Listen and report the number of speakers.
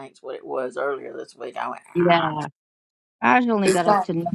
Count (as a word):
two